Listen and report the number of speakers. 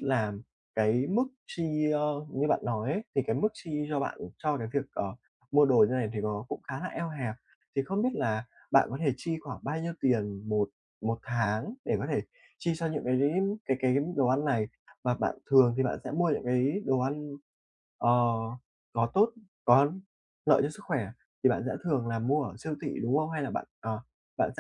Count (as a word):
one